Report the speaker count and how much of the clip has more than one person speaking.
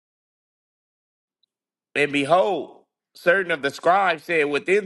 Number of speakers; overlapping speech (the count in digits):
1, no overlap